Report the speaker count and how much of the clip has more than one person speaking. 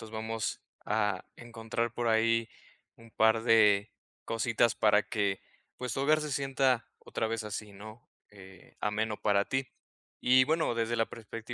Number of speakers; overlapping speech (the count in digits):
1, no overlap